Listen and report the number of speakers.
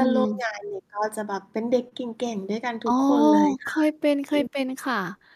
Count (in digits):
2